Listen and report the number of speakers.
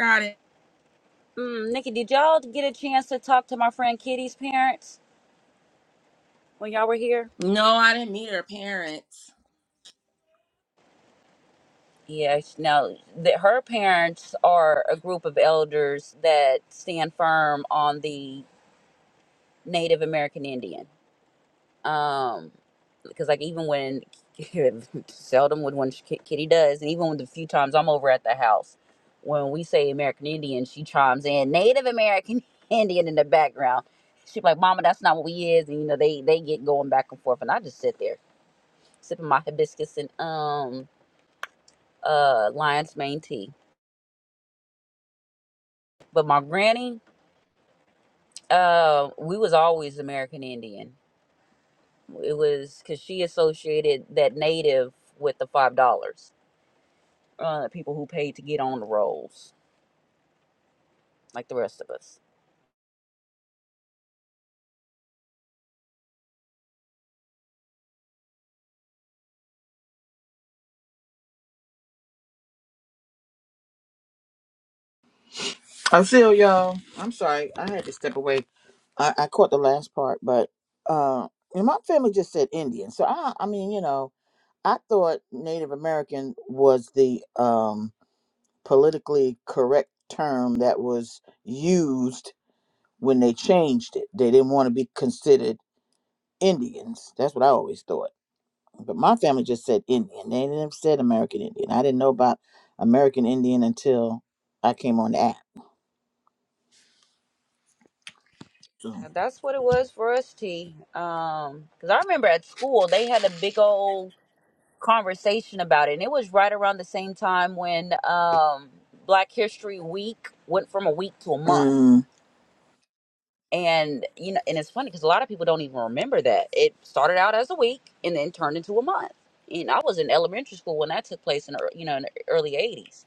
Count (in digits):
3